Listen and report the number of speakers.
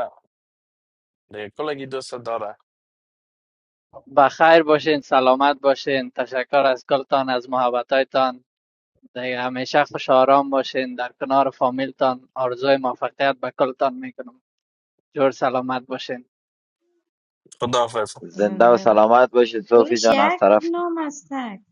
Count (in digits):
4